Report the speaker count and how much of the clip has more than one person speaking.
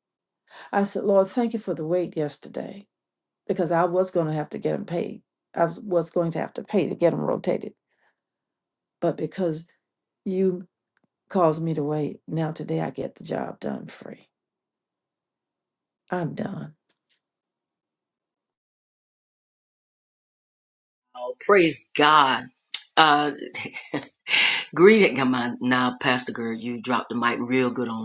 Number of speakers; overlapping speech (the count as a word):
two, no overlap